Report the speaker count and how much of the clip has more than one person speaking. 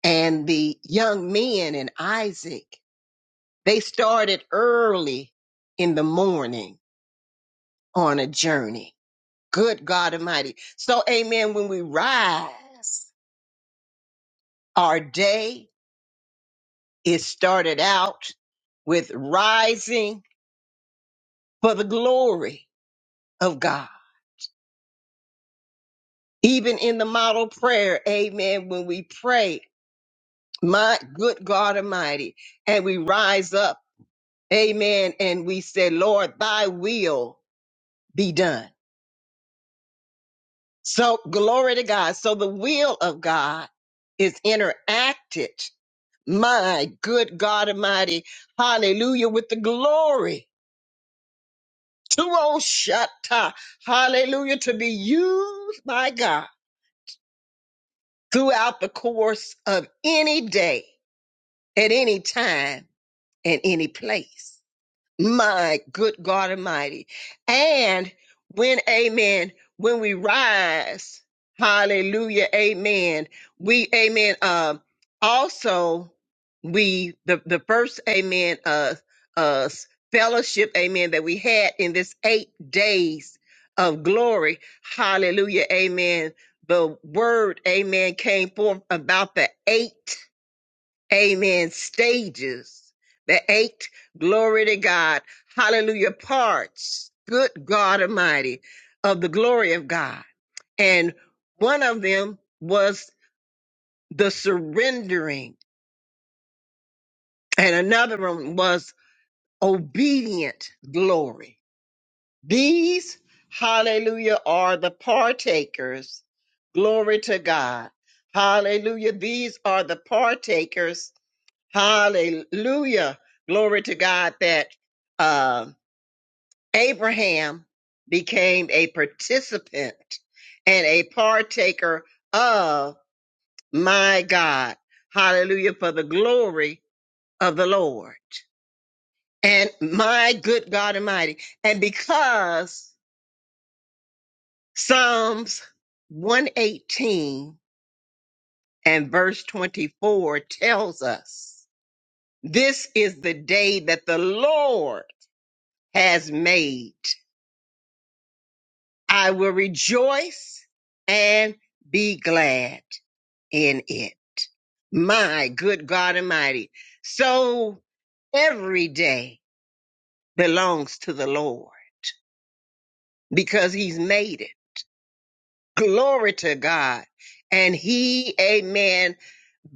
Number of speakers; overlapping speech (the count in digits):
1, no overlap